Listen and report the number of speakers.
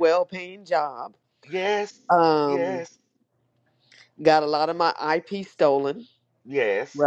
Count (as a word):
two